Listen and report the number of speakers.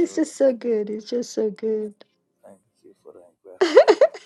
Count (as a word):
two